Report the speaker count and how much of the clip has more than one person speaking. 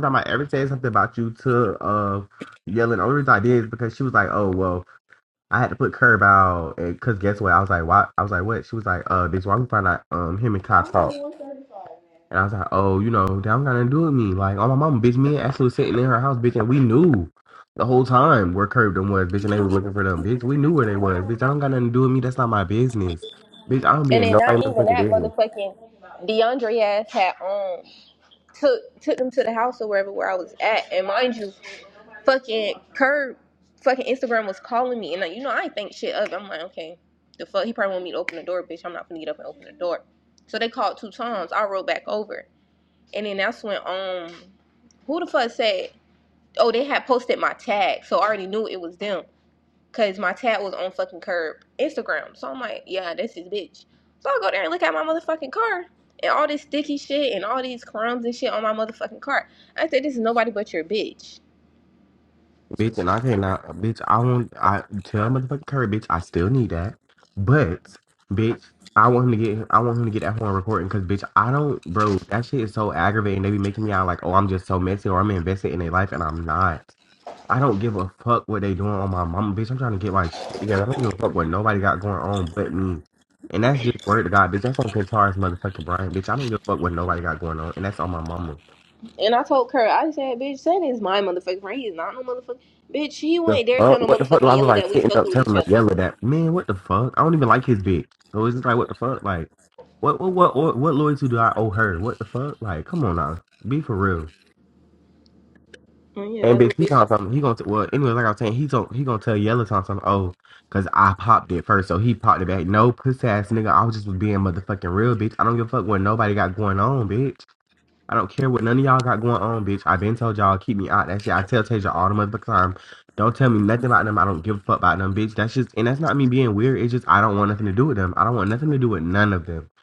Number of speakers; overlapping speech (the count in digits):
2, about 3%